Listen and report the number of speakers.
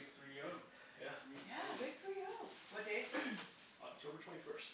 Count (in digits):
3